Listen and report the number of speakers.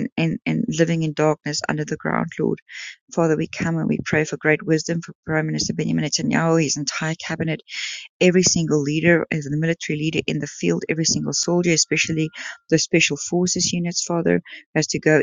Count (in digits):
1